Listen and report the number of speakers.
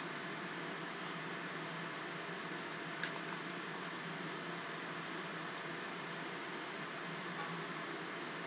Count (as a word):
zero